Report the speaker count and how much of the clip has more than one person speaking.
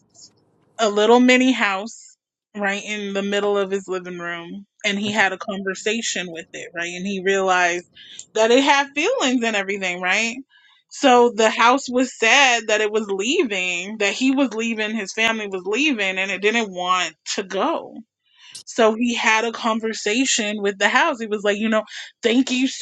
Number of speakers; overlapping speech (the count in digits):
1, no overlap